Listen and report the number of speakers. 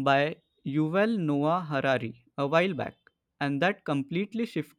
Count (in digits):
1